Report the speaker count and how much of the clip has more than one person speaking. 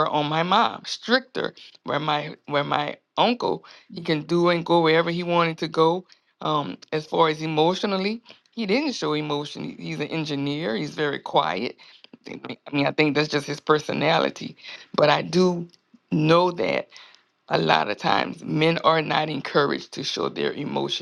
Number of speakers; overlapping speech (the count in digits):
1, no overlap